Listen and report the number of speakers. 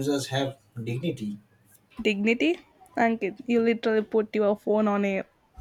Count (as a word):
two